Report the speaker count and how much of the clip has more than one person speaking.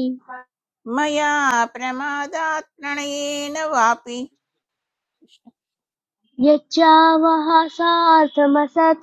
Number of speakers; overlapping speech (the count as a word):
two, no overlap